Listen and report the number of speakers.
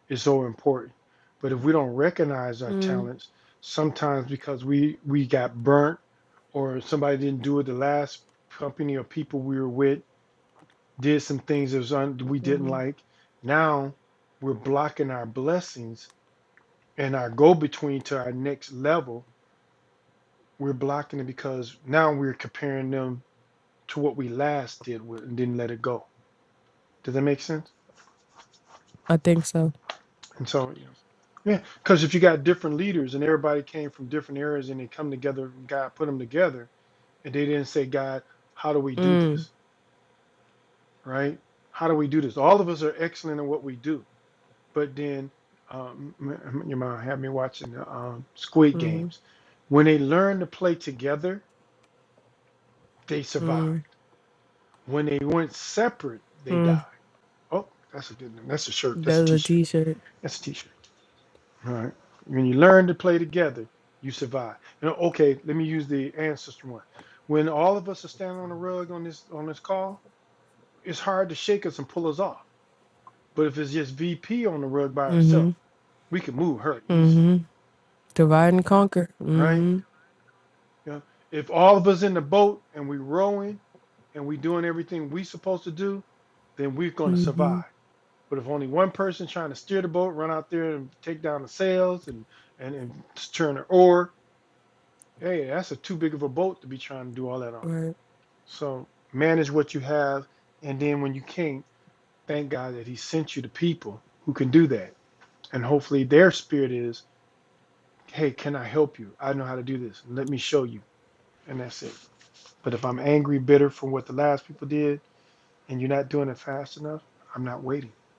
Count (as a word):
two